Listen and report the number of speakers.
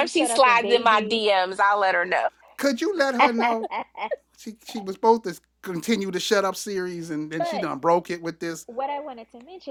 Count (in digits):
3